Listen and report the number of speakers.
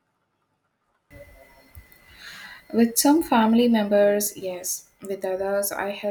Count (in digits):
1